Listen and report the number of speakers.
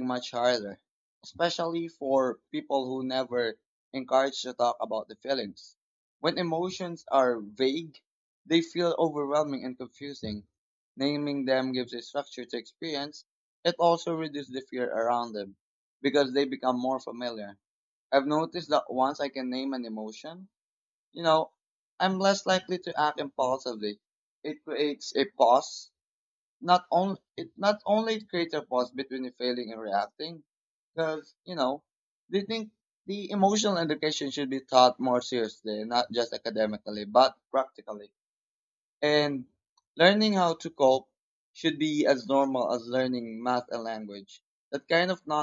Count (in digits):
1